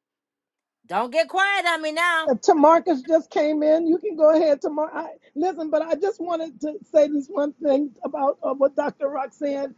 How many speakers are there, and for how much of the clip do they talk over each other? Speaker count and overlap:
two, under 1%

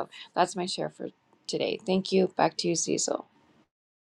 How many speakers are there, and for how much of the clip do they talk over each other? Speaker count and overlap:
one, no overlap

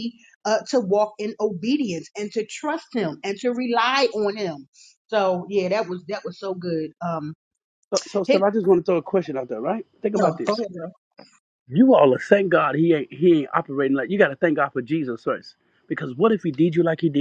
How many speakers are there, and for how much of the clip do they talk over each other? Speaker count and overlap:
two, about 3%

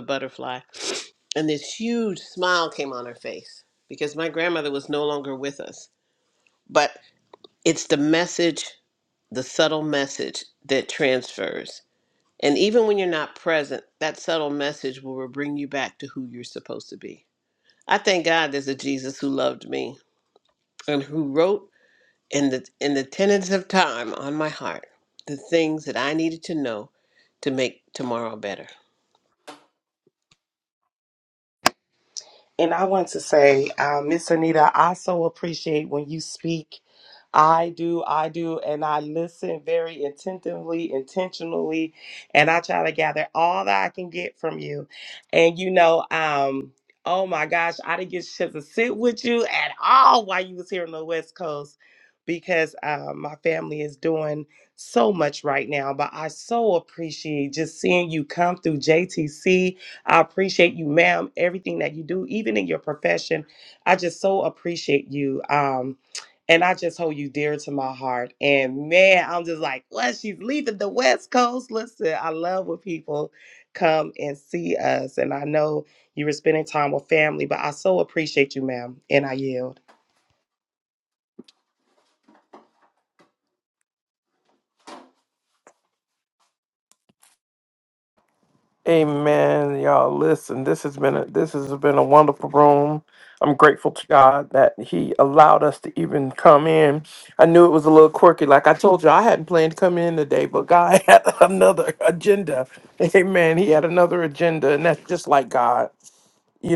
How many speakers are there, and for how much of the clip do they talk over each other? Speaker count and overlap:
three, no overlap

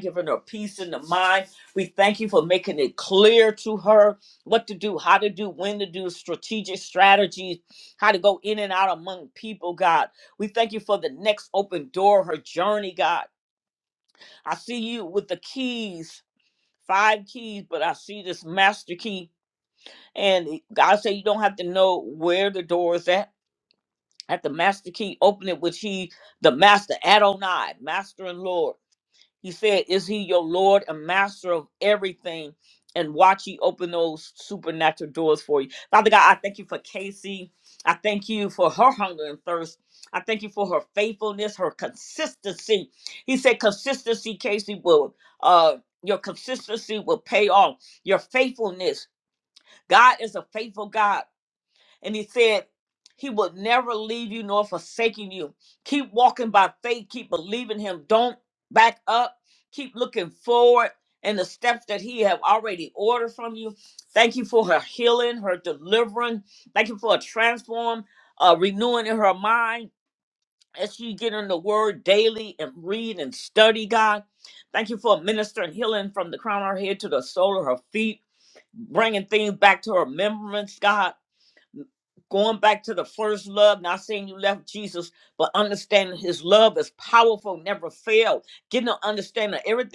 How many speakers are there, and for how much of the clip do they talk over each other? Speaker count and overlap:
one, no overlap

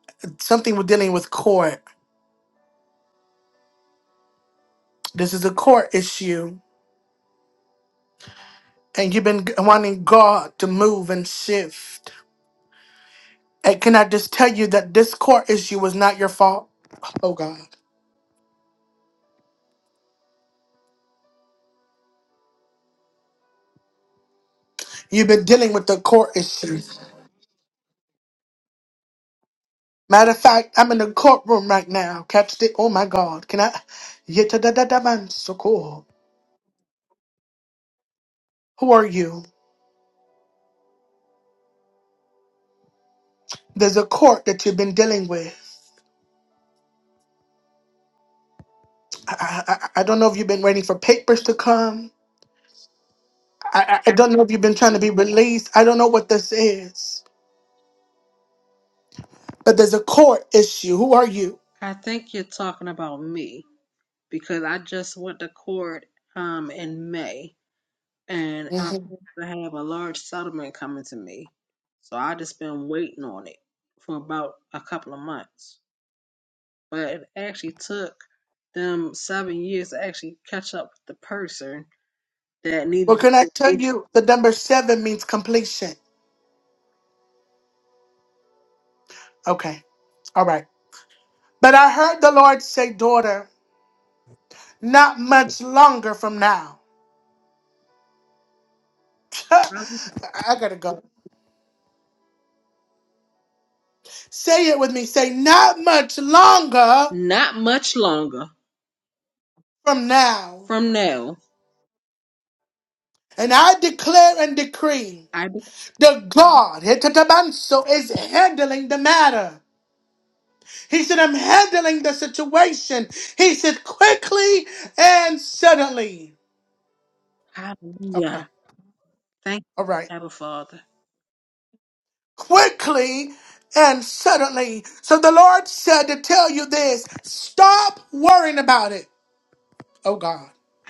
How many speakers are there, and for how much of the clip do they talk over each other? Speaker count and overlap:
two, about 1%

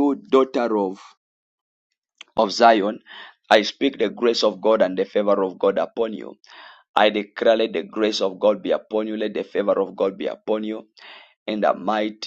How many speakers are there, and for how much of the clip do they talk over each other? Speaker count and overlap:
one, no overlap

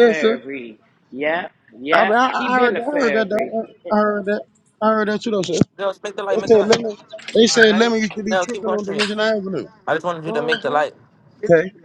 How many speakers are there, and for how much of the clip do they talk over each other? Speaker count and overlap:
three, about 32%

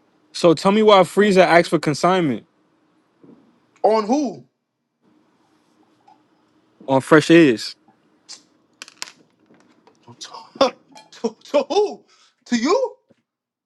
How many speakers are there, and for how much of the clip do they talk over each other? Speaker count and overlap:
two, no overlap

